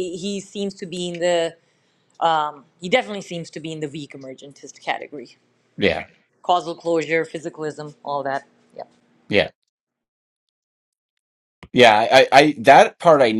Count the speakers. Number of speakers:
two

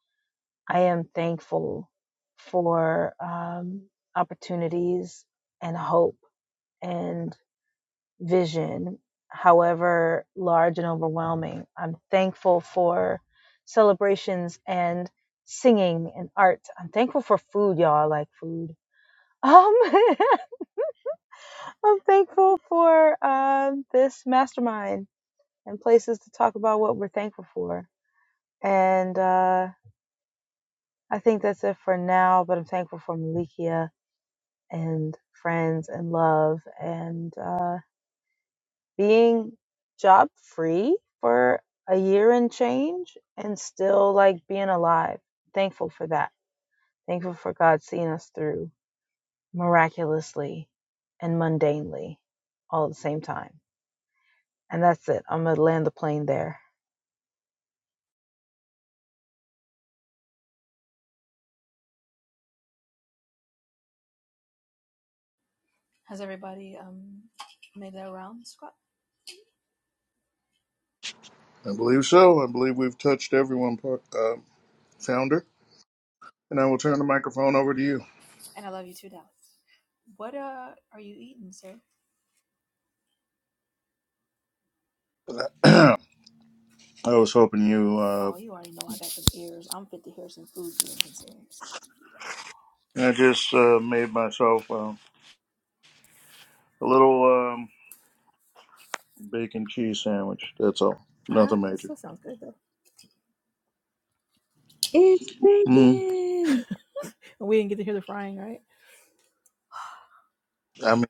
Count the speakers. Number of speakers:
four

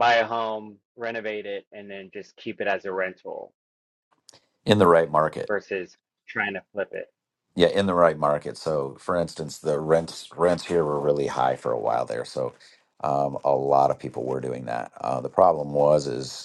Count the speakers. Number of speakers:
two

